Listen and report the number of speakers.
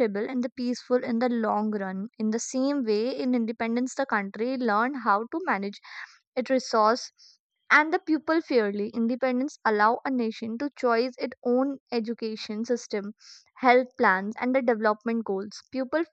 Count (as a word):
one